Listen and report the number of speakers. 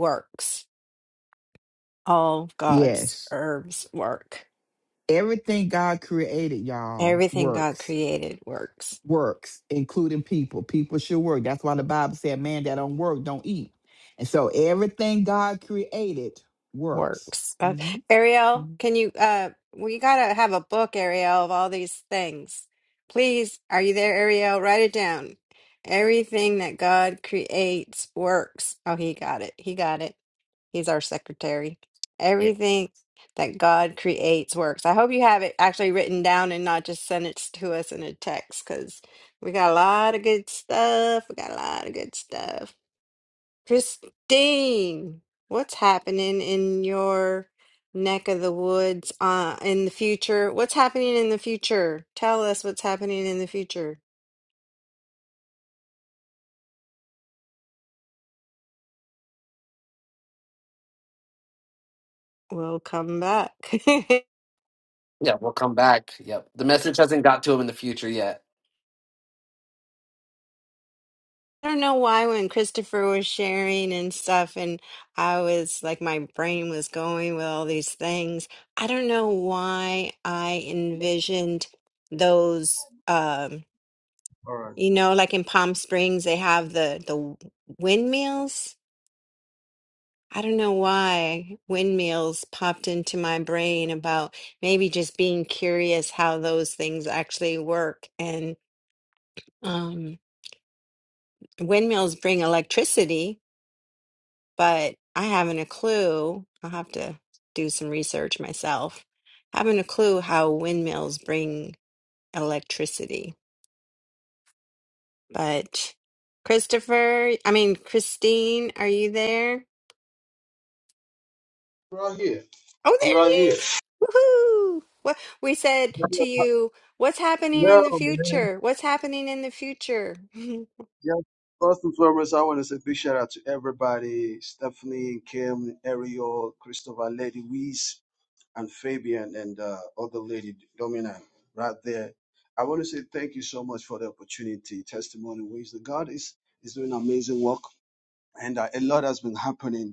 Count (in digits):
4